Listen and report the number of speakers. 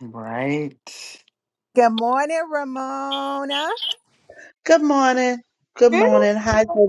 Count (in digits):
3